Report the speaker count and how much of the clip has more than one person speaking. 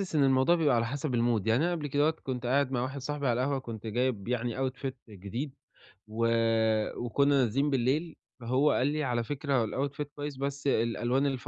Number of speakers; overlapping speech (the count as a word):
one, no overlap